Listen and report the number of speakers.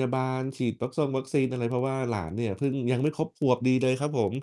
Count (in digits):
1